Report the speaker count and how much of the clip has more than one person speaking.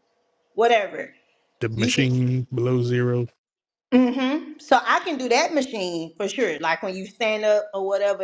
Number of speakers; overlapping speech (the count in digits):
2, about 3%